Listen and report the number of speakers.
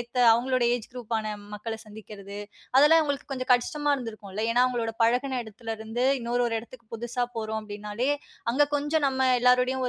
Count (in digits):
1